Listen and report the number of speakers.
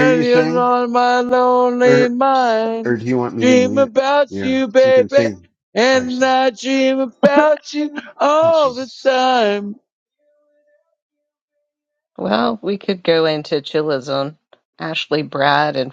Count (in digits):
3